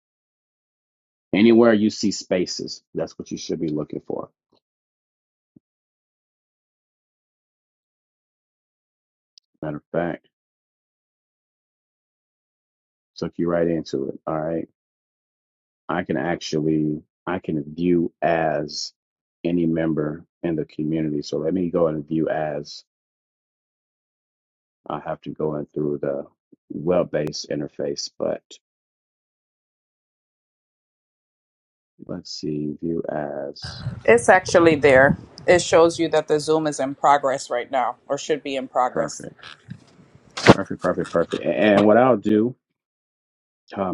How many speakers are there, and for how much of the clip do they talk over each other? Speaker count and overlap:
two, under 1%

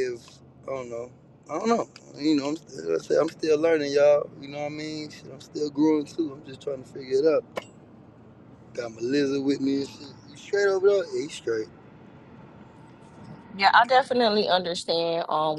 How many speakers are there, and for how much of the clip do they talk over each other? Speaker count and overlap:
two, no overlap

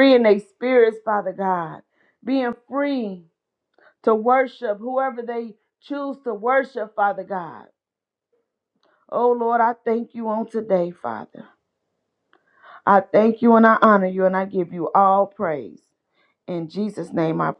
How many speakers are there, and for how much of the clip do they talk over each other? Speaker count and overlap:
one, no overlap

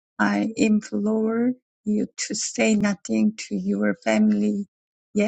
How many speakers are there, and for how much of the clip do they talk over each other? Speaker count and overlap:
one, no overlap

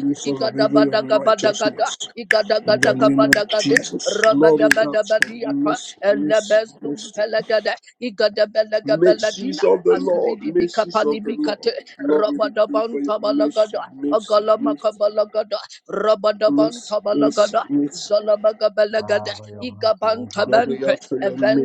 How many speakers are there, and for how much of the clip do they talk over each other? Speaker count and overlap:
three, about 67%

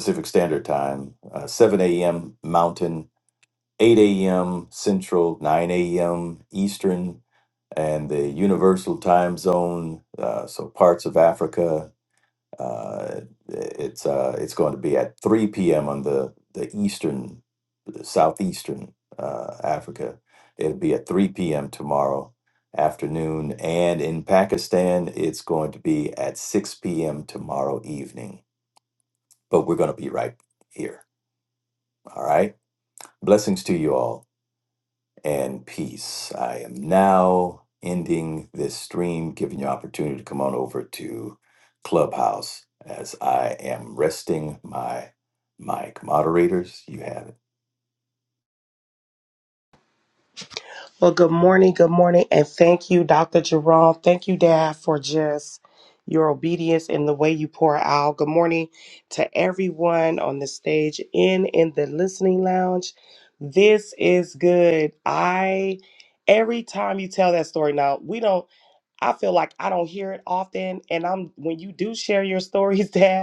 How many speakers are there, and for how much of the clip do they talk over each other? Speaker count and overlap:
two, no overlap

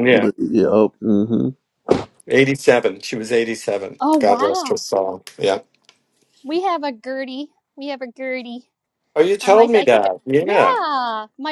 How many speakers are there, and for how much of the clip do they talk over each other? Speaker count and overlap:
three, about 18%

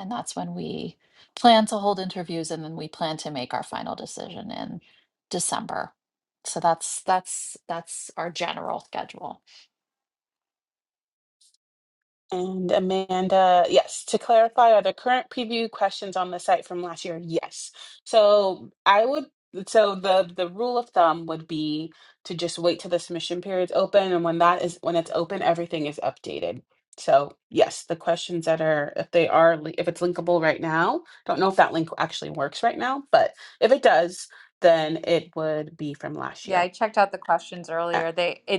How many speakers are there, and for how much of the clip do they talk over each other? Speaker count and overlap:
three, about 1%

